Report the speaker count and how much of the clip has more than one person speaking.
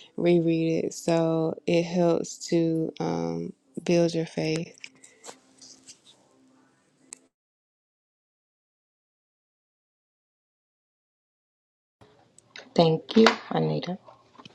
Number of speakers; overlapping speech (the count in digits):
2, no overlap